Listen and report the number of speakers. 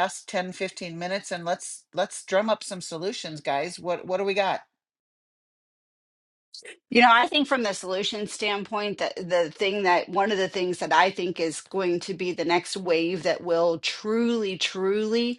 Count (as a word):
two